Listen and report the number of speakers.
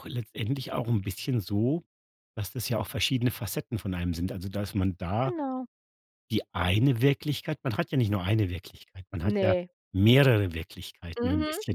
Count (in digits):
2